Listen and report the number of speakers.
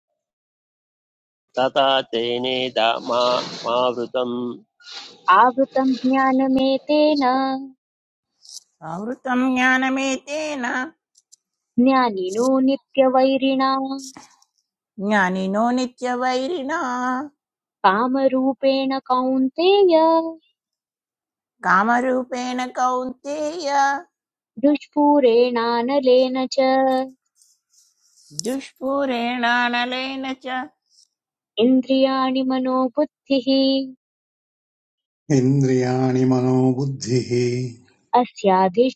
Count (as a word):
four